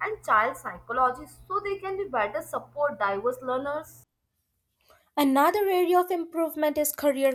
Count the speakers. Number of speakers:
two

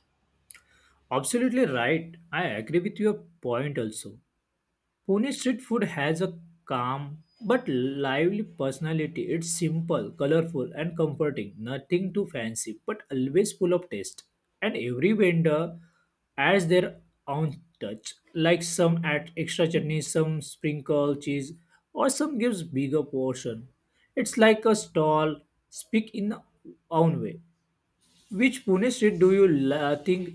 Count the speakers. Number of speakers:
one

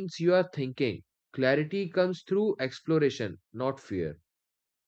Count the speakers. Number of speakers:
one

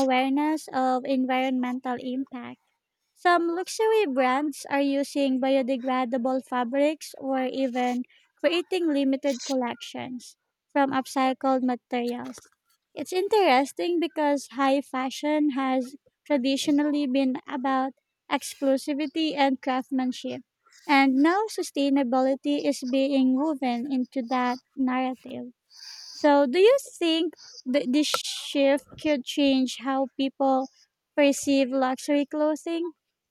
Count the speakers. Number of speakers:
one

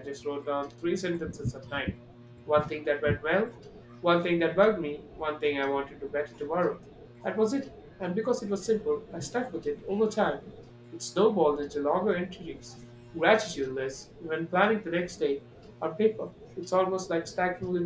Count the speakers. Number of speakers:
one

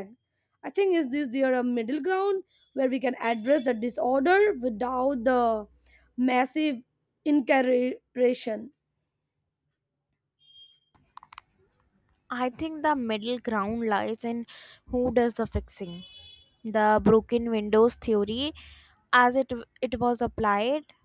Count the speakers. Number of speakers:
two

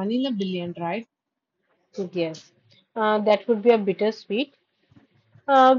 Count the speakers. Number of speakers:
two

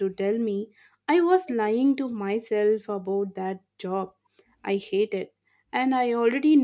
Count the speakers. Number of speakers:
one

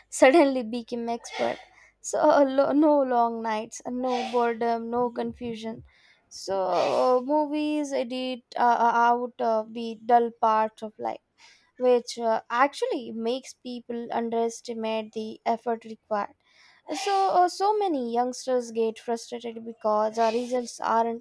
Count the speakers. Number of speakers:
one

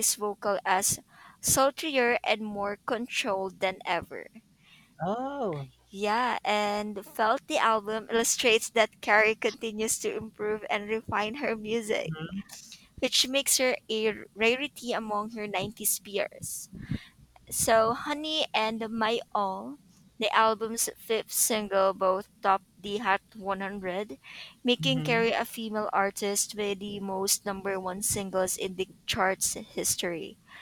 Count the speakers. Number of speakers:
two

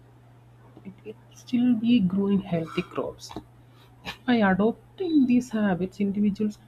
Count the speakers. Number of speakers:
one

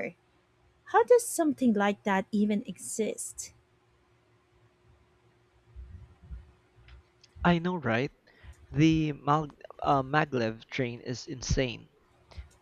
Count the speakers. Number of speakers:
two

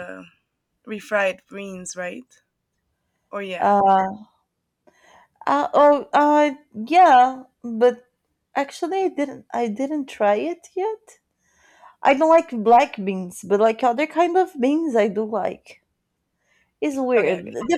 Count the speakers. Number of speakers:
two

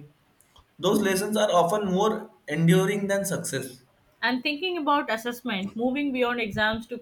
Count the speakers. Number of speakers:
two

